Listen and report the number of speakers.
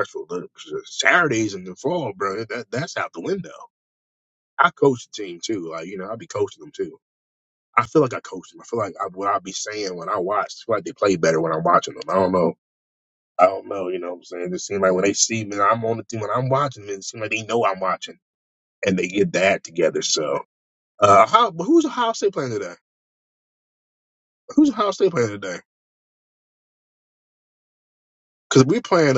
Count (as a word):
one